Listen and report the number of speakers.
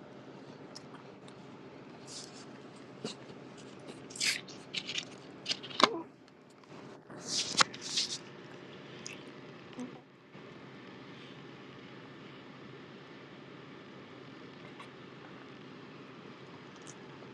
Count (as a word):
zero